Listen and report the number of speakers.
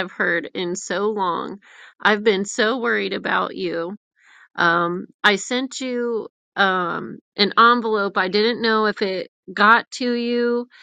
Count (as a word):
one